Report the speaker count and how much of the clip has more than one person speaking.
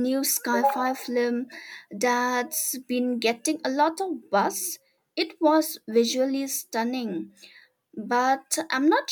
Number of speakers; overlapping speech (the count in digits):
1, no overlap